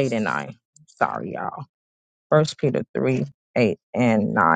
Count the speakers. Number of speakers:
1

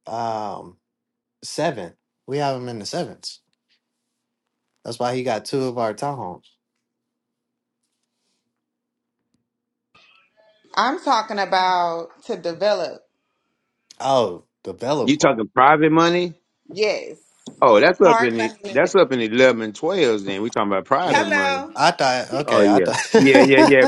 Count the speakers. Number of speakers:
3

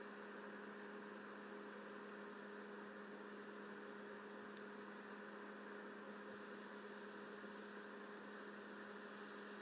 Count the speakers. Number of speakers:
0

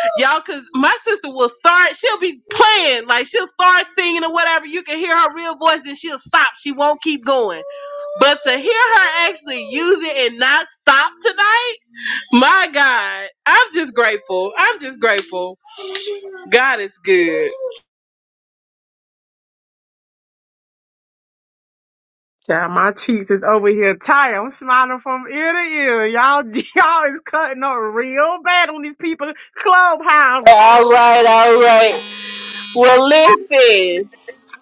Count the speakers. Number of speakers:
2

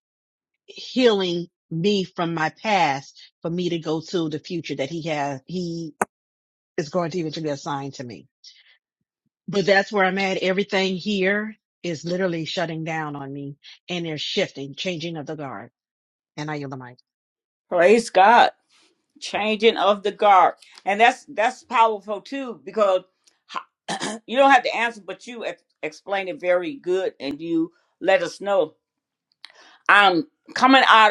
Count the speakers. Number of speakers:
2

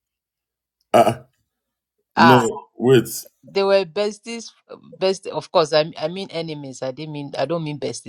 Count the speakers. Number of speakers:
2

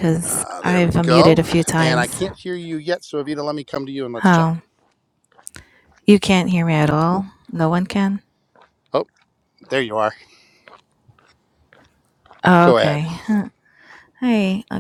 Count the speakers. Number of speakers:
2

